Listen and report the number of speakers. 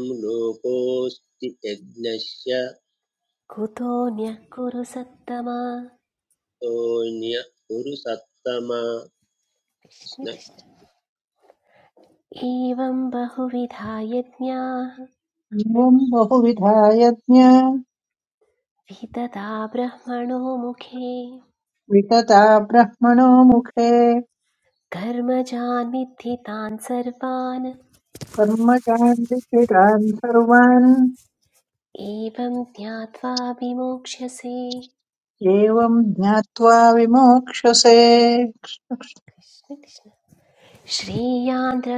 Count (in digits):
3